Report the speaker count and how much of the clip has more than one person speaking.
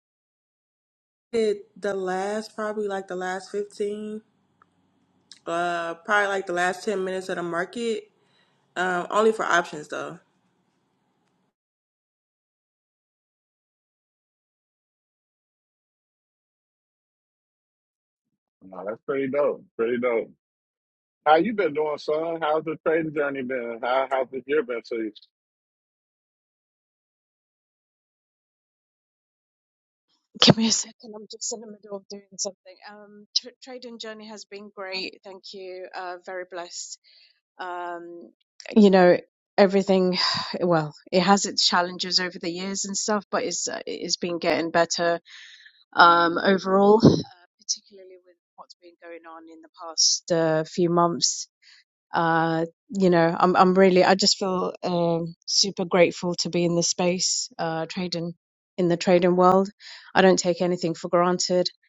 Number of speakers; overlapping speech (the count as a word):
three, no overlap